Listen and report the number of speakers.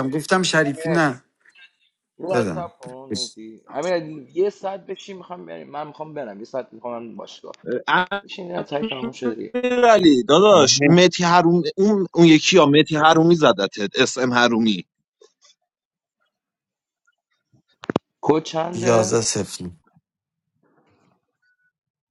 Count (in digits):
3